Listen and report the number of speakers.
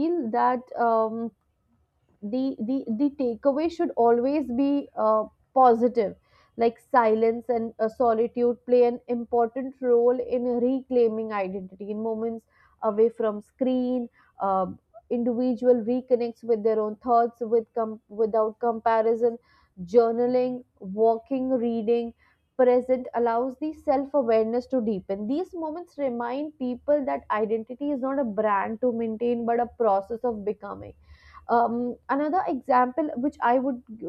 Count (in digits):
1